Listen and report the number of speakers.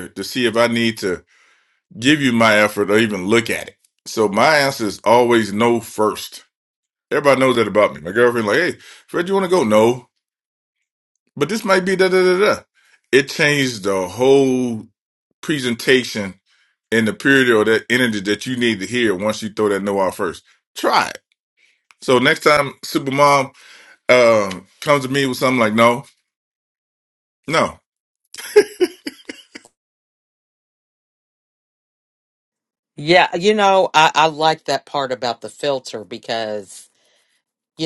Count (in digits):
2